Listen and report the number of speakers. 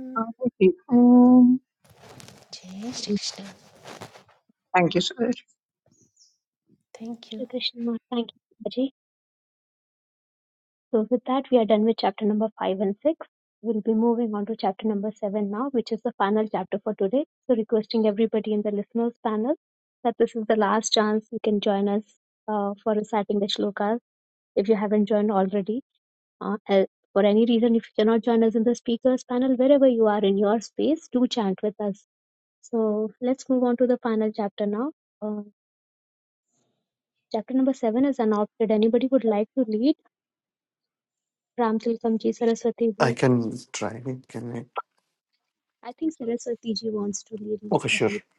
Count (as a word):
four